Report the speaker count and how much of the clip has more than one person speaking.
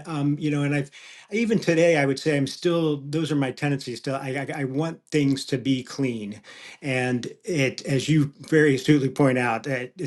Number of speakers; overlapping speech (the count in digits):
1, no overlap